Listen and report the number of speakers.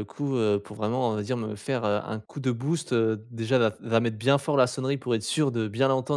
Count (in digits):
1